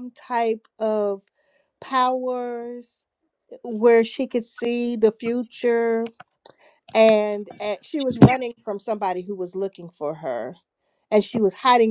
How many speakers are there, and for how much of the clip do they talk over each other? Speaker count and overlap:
one, no overlap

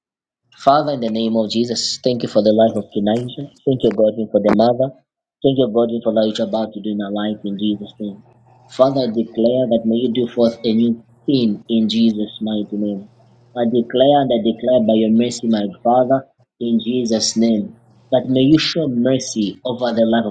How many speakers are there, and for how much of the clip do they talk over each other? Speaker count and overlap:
one, no overlap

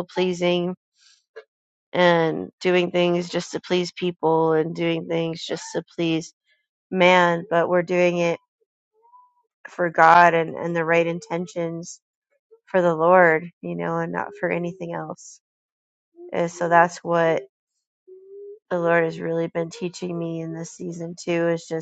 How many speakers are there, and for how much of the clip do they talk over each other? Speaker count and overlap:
one, no overlap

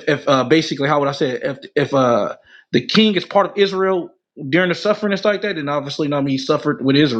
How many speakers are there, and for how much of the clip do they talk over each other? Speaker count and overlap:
one, no overlap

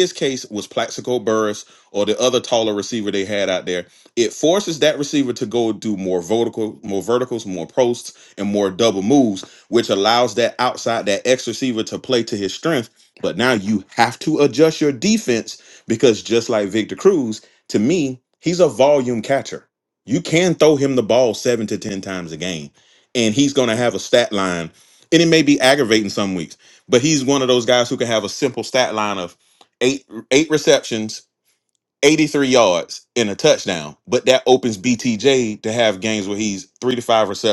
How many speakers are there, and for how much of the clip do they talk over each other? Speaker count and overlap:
one, no overlap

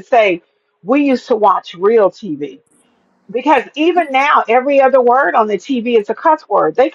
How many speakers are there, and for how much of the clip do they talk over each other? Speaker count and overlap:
one, no overlap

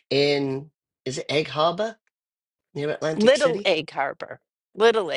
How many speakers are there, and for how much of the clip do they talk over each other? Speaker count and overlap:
two, about 9%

